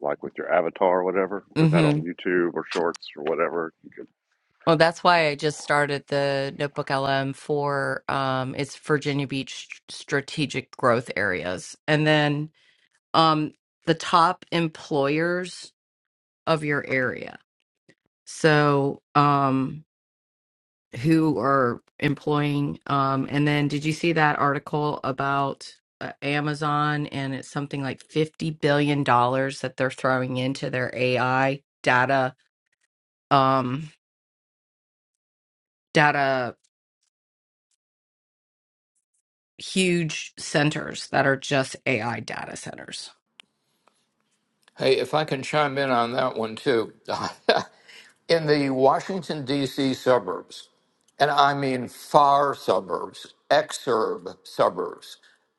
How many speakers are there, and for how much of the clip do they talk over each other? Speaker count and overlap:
3, about 1%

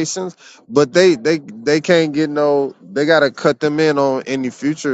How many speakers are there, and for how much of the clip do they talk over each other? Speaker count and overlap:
1, no overlap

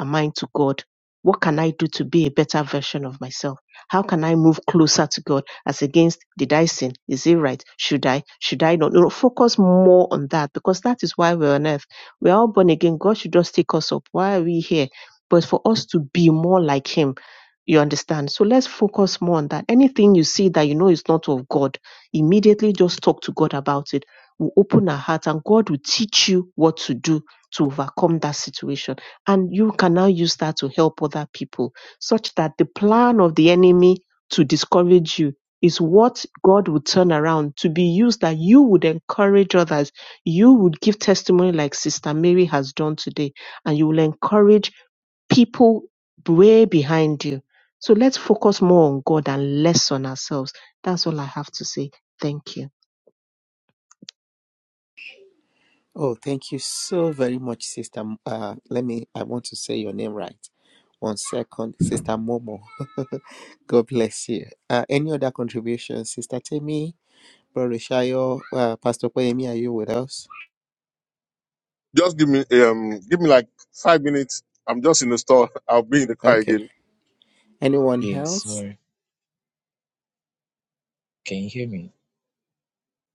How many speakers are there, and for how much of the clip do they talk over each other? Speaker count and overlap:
4, about 1%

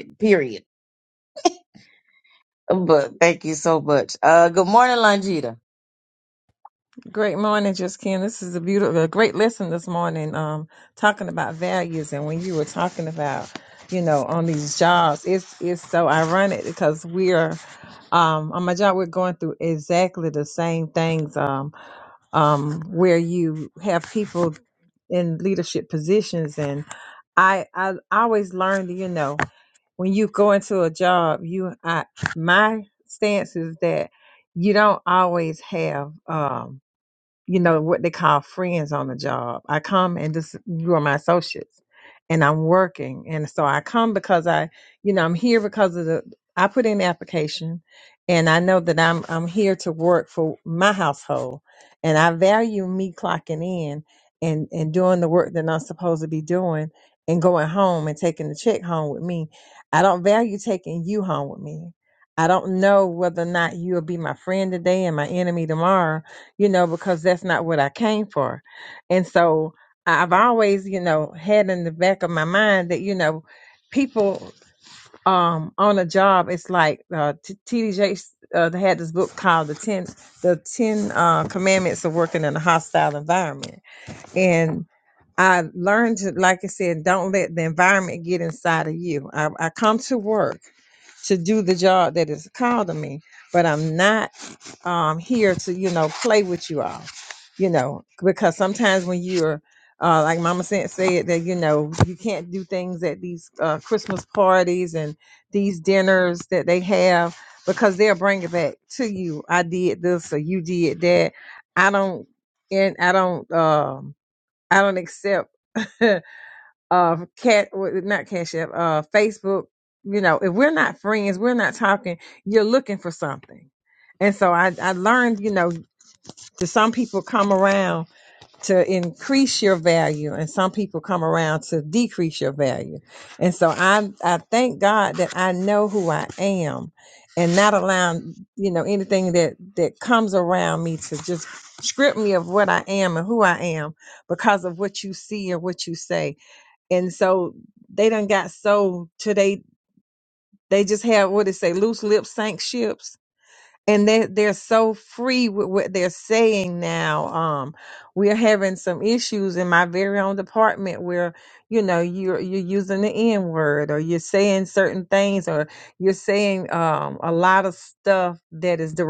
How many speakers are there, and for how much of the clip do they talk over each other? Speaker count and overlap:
2, no overlap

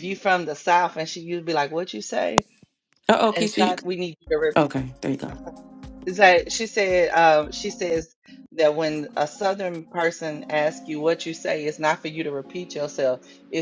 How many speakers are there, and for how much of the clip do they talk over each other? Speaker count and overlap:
2, about 3%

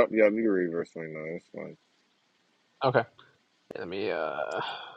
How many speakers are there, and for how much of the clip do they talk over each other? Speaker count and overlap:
2, no overlap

